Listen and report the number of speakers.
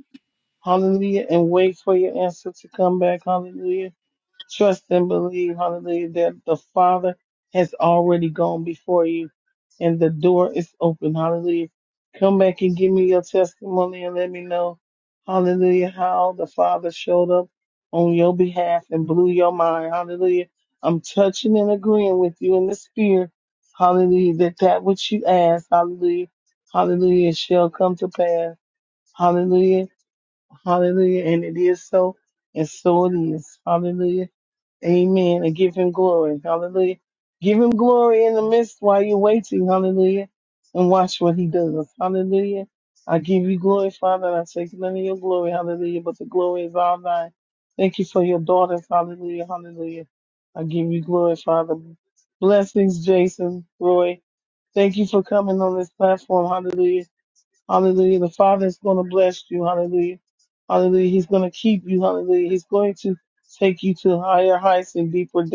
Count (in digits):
1